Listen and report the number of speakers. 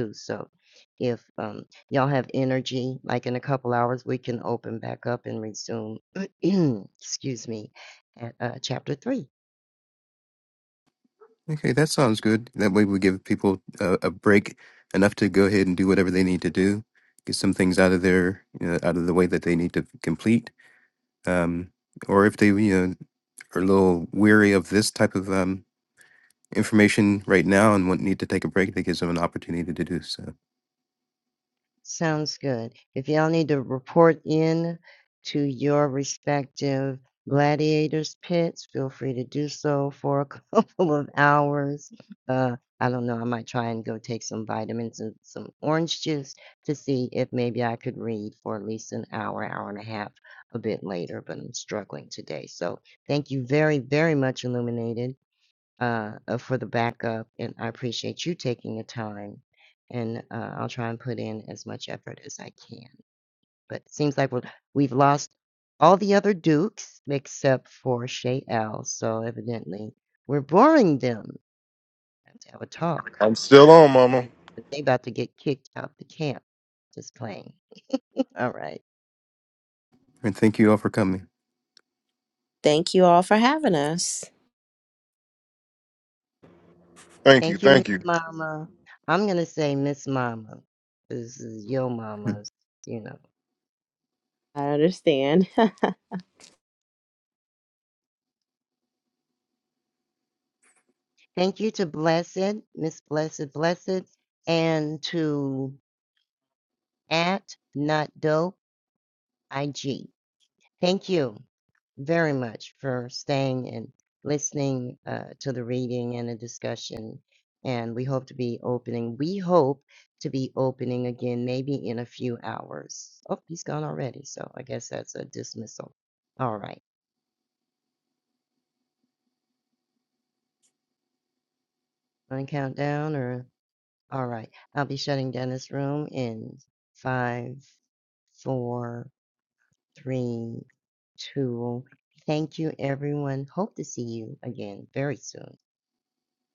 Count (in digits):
4